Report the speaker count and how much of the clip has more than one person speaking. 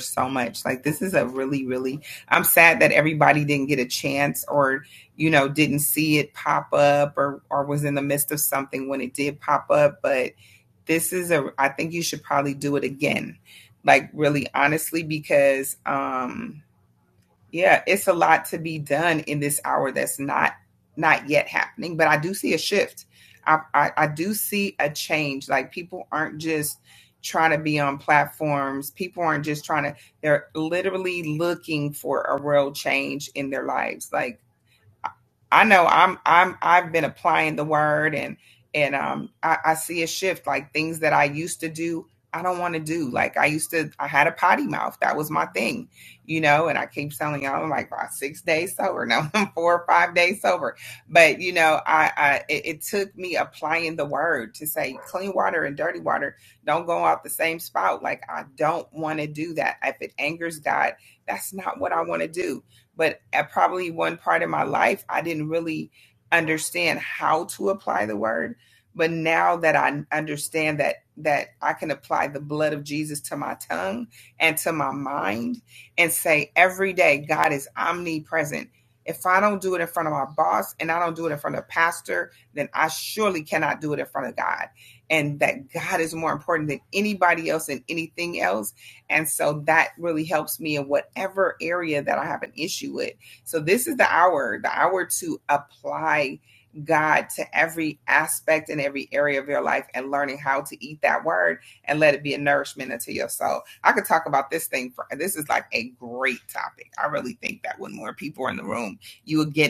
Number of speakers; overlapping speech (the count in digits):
1, no overlap